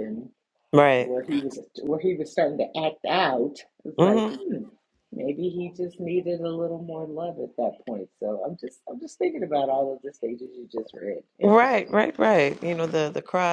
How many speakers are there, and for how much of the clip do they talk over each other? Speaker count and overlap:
2, about 8%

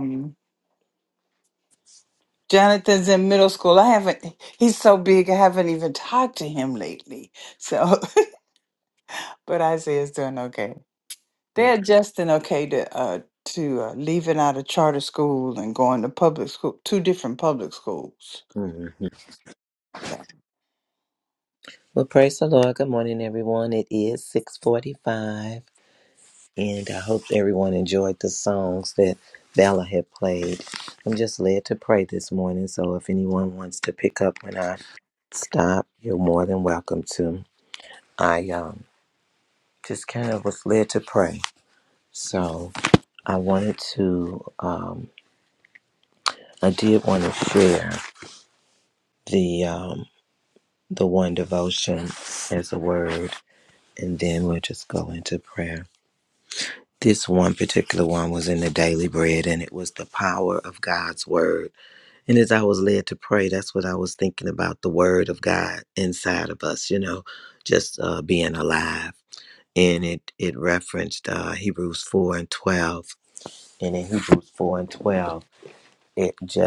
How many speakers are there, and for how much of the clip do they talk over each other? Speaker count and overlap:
2, no overlap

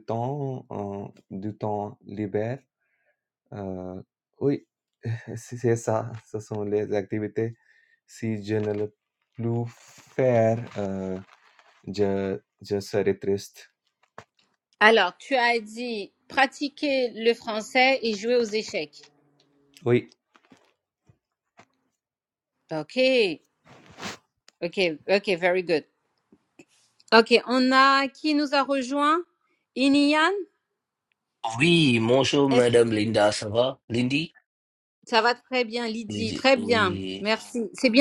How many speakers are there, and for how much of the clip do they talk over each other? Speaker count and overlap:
3, about 3%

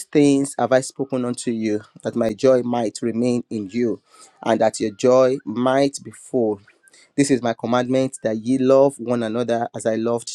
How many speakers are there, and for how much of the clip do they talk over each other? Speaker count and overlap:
1, no overlap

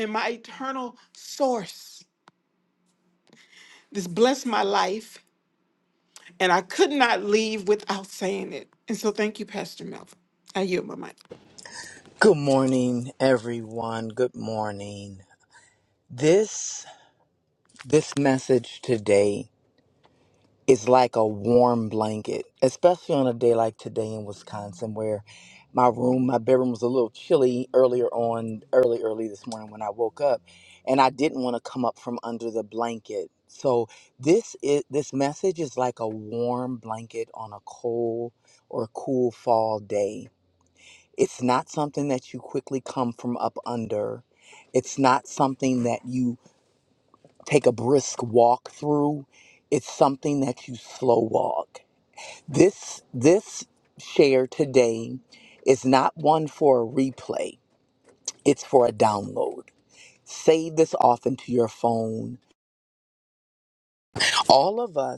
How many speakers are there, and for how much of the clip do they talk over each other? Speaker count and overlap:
2, no overlap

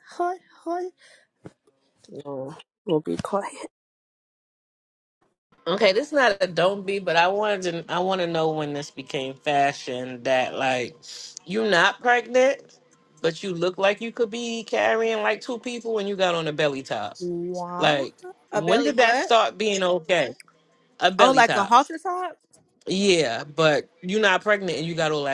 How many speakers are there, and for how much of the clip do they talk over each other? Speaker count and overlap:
3, about 6%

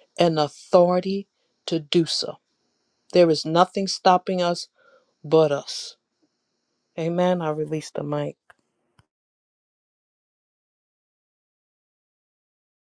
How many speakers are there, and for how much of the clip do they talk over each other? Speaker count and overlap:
1, no overlap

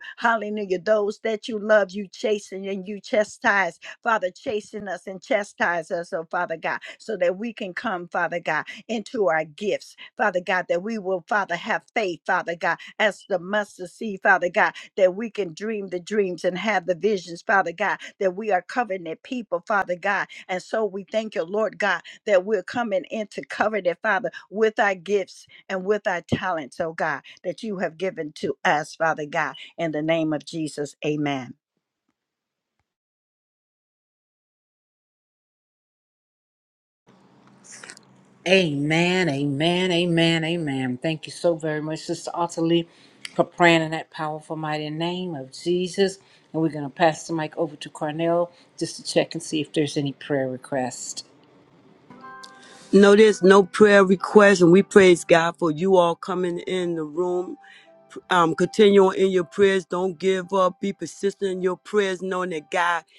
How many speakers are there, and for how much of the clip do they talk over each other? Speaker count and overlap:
3, no overlap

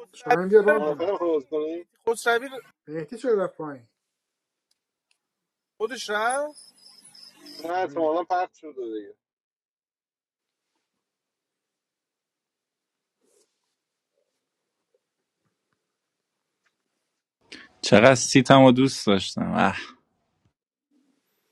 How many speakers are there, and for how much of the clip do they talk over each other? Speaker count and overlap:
4, about 6%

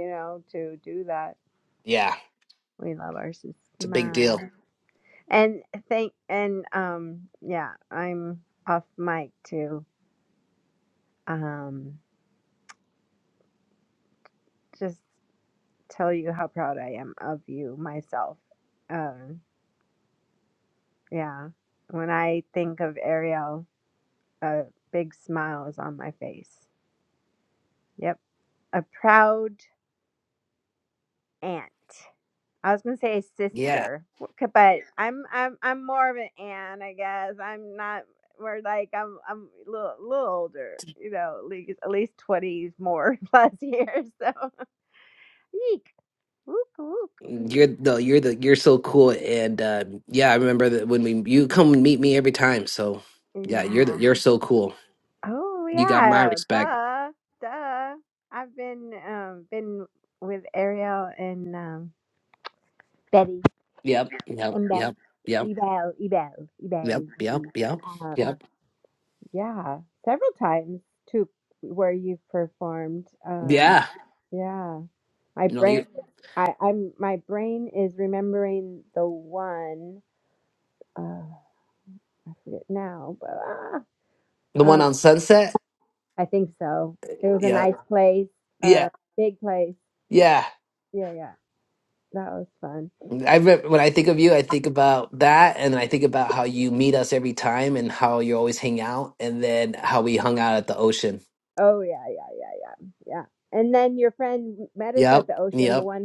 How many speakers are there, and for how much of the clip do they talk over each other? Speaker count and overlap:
2, about 6%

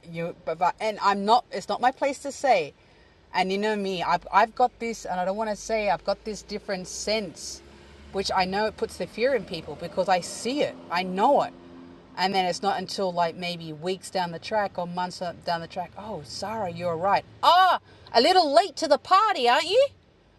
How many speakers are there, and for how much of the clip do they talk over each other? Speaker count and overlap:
1, no overlap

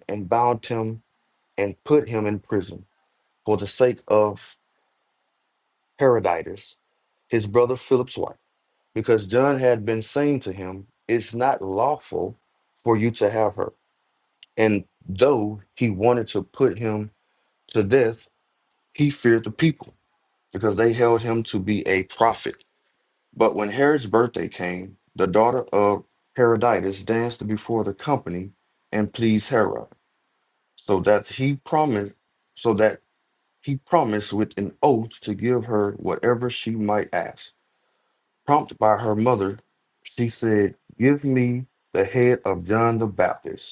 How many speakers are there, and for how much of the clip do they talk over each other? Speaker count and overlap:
1, no overlap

